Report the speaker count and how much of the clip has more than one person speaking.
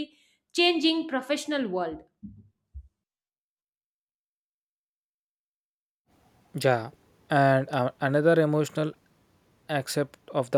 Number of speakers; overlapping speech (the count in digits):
2, no overlap